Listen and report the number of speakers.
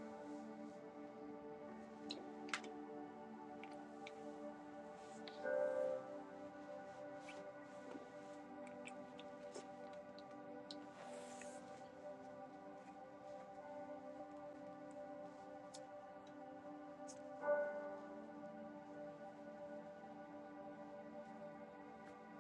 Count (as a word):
zero